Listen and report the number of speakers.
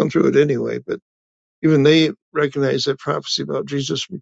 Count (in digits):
1